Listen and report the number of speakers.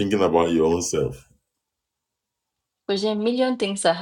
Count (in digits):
2